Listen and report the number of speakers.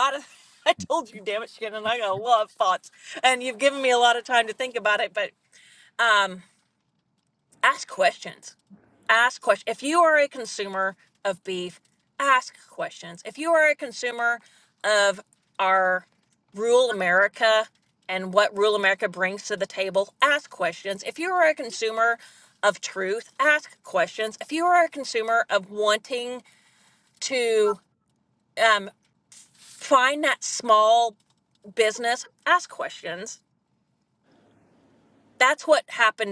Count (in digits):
1